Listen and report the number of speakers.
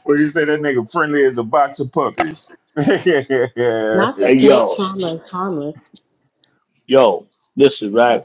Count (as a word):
three